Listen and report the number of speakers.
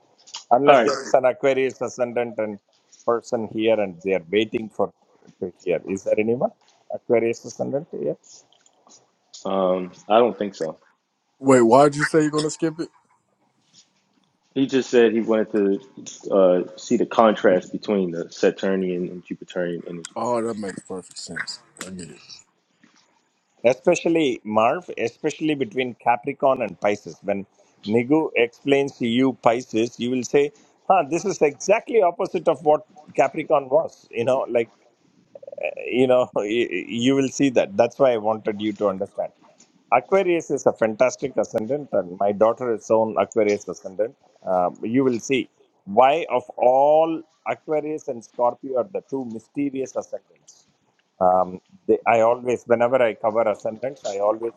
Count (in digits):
3